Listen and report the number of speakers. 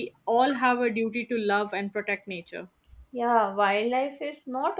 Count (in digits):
2